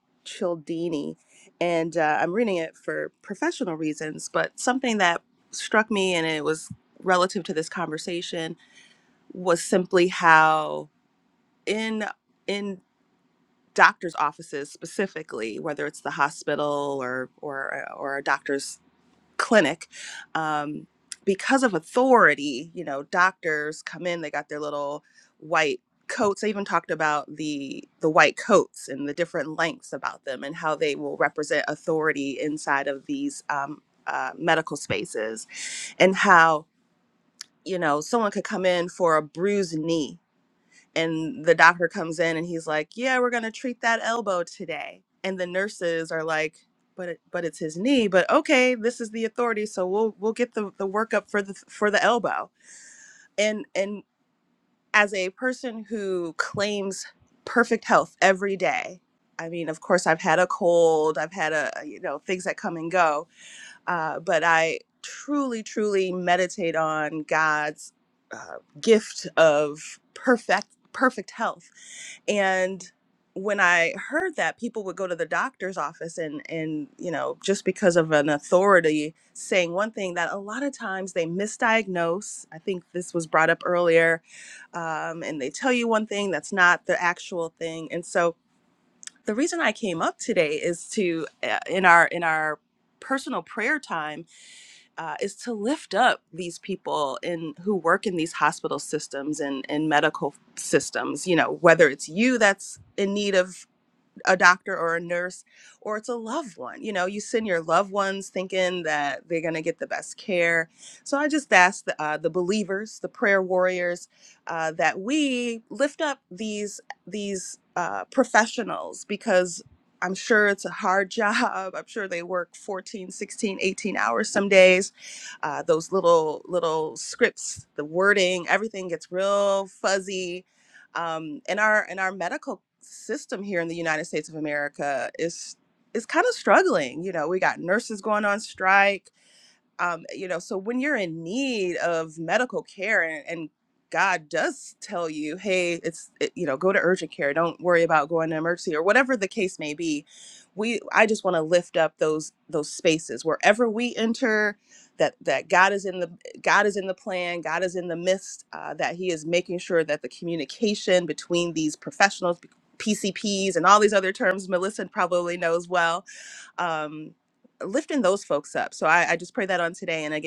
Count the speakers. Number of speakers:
one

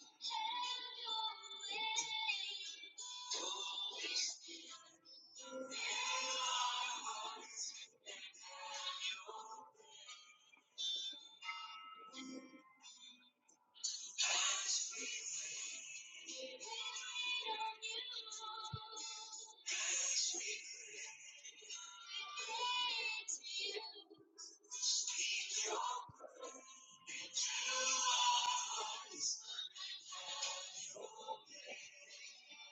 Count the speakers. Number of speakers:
zero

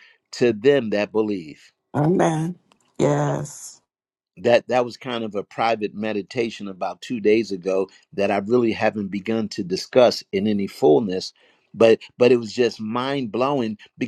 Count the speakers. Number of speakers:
two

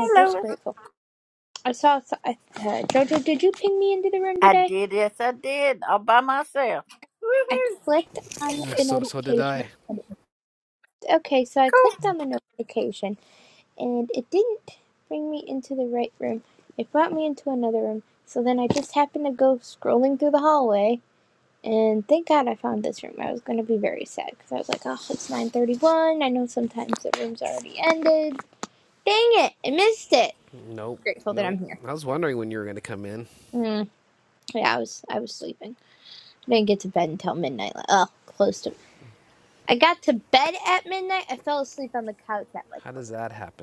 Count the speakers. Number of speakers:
three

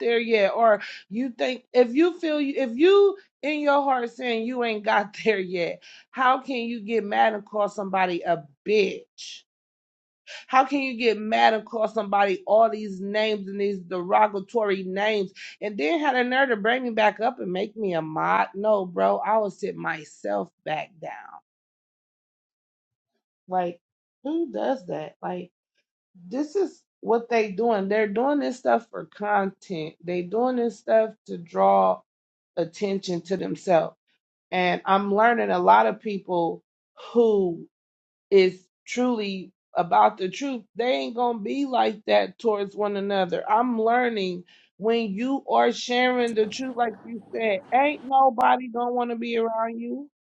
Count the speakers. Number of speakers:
one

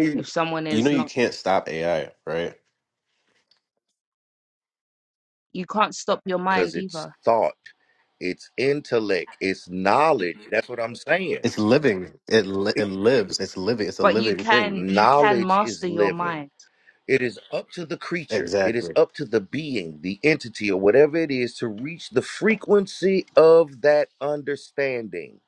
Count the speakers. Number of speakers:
three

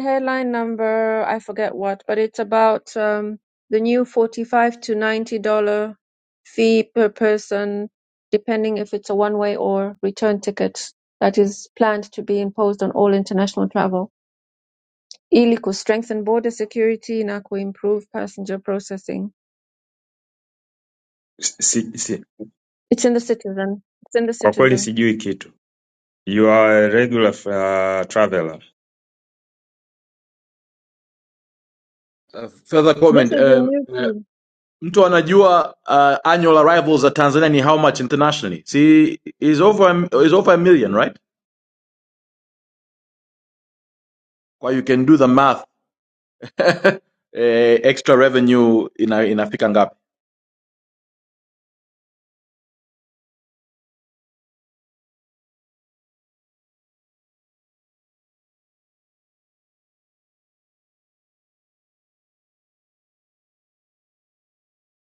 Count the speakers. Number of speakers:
three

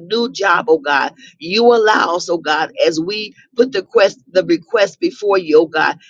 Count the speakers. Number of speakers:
one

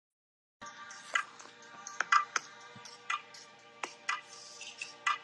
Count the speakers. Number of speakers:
zero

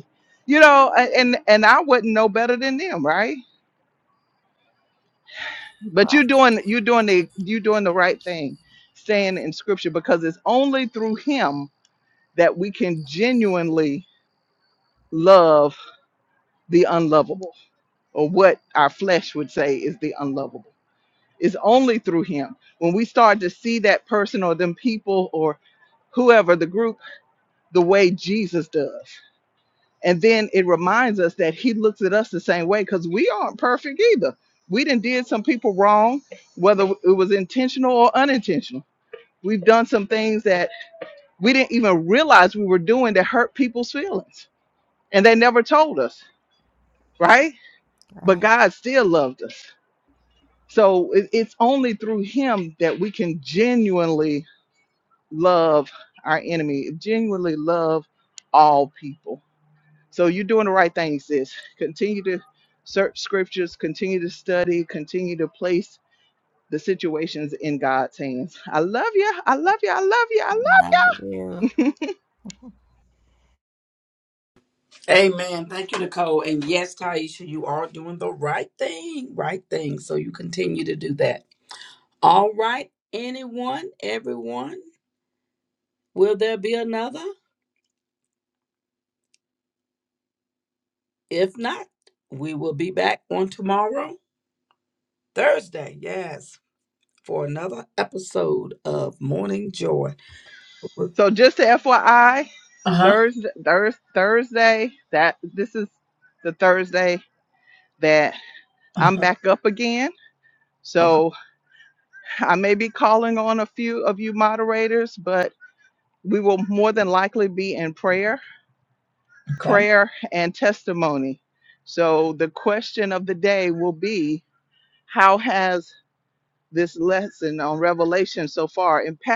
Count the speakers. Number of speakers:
three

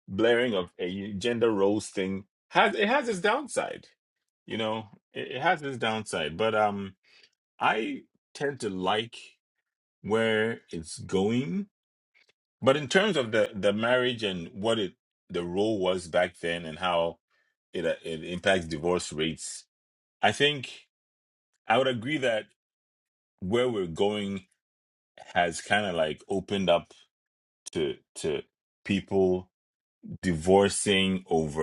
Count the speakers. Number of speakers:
one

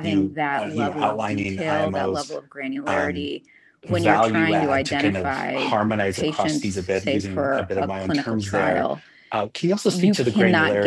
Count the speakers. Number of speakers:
two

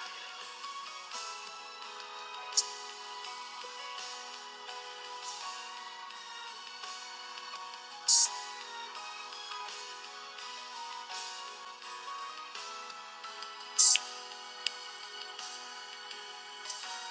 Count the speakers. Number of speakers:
zero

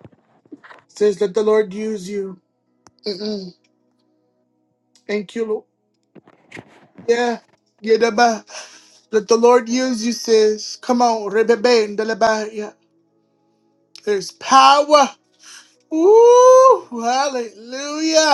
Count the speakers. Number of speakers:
one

